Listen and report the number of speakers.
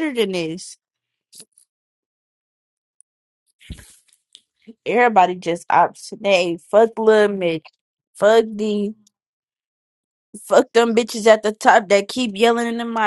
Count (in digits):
1